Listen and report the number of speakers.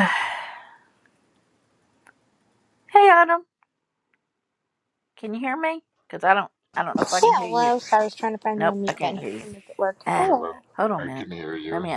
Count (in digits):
3